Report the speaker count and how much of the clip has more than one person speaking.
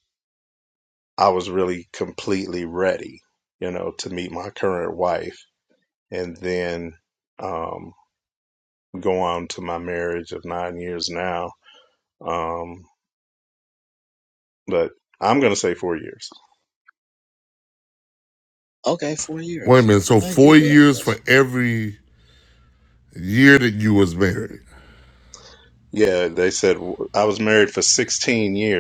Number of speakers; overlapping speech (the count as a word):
three, about 3%